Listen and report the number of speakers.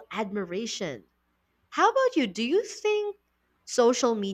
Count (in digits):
1